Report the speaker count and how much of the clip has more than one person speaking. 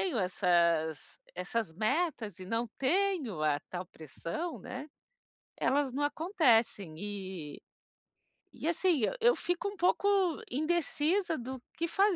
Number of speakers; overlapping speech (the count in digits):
1, no overlap